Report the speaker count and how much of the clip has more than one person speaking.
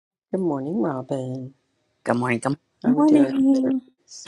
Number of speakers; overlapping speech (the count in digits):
2, about 19%